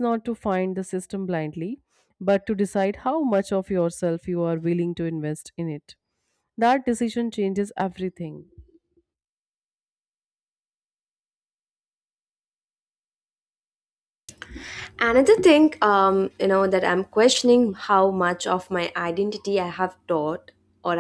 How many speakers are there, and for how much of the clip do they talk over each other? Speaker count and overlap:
2, no overlap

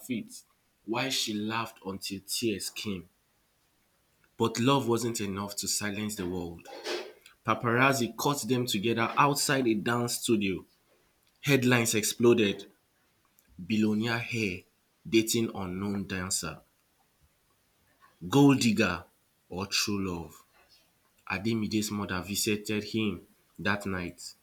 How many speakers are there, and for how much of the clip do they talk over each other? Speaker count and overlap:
1, no overlap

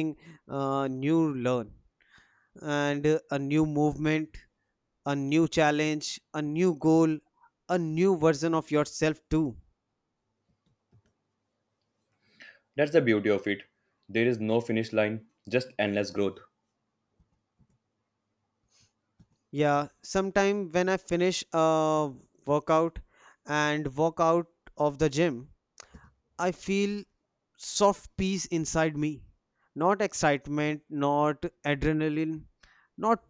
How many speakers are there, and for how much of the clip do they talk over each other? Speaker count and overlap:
2, no overlap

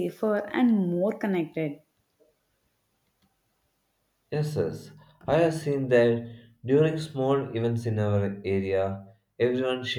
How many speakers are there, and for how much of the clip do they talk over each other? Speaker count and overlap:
2, no overlap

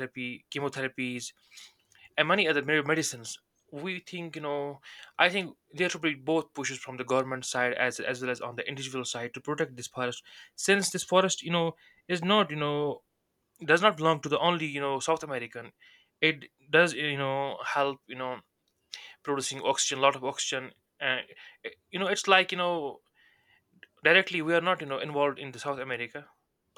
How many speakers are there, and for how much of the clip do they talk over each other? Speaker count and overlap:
1, no overlap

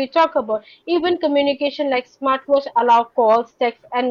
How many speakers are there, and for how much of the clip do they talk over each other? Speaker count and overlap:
1, no overlap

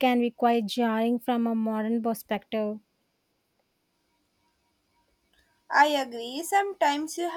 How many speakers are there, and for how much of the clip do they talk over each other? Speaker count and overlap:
2, no overlap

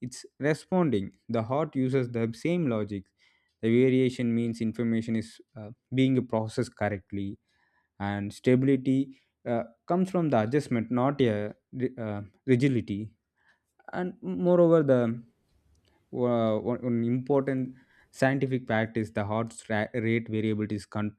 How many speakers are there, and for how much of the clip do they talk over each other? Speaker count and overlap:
1, no overlap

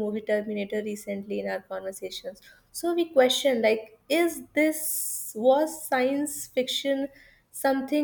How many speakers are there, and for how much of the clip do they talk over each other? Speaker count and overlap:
1, no overlap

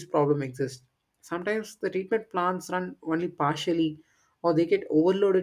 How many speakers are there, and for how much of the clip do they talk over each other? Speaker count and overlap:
1, no overlap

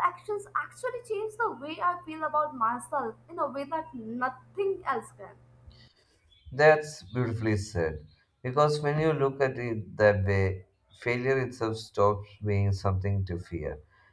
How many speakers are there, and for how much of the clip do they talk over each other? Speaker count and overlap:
2, no overlap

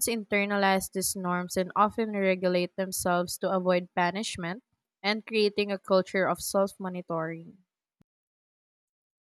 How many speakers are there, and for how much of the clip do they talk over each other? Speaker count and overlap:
1, no overlap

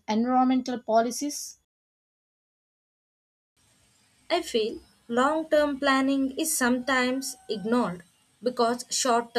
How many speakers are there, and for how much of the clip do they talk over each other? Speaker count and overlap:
2, no overlap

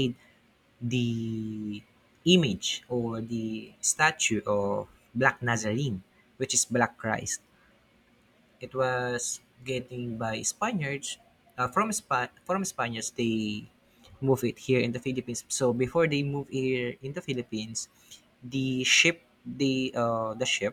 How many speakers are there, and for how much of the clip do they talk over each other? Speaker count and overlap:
1, no overlap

